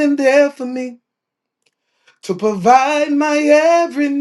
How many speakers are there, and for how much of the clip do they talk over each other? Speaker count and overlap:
one, no overlap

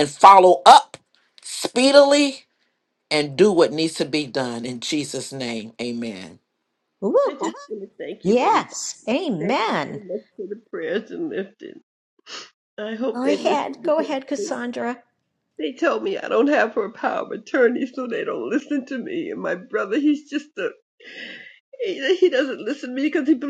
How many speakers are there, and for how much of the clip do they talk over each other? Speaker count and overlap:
three, about 10%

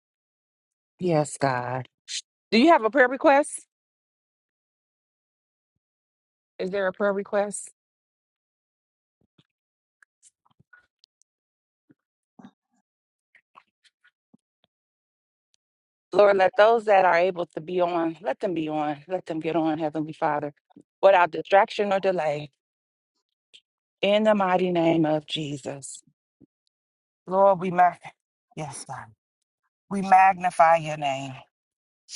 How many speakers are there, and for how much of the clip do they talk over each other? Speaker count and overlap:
one, no overlap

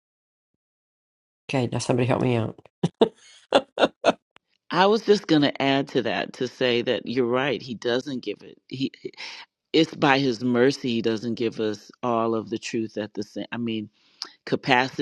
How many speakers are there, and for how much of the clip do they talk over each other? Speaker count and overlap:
two, no overlap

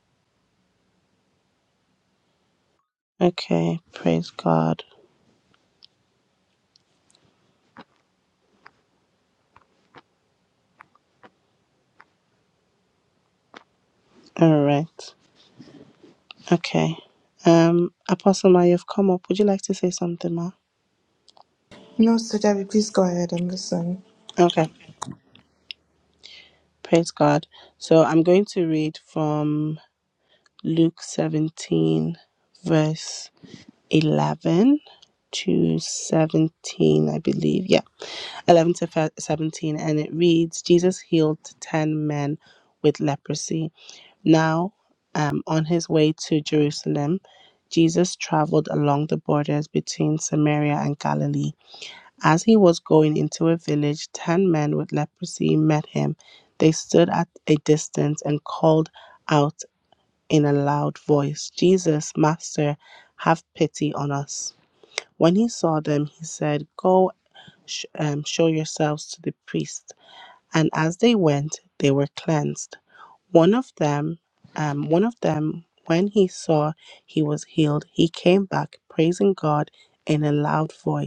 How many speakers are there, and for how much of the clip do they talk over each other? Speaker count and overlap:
two, no overlap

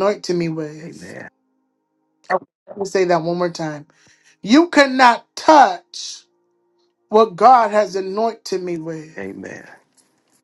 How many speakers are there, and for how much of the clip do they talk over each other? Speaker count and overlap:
two, under 1%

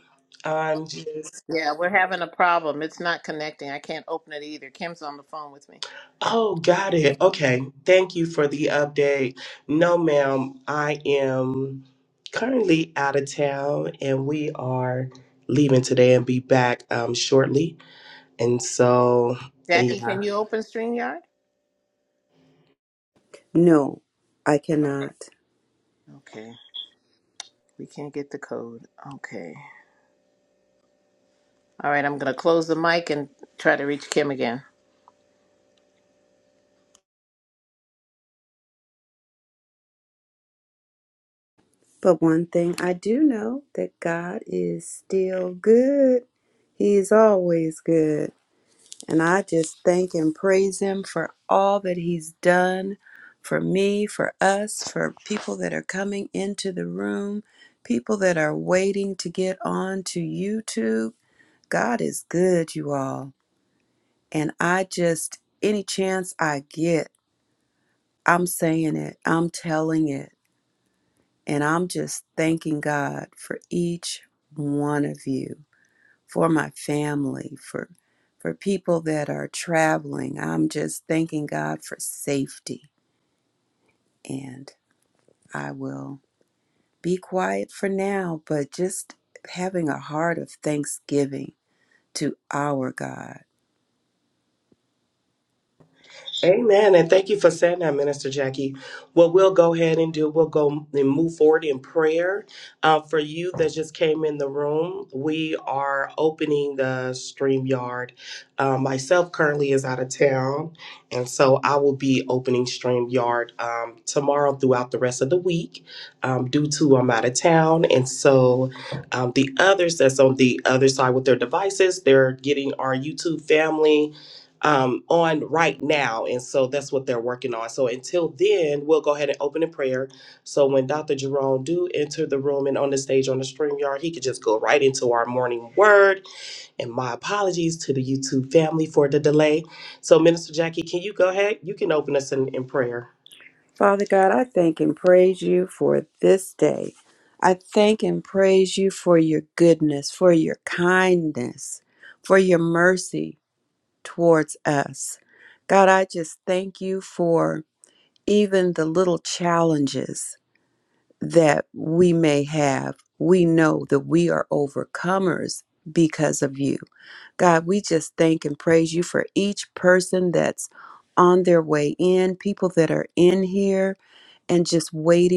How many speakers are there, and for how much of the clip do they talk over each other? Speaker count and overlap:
three, under 1%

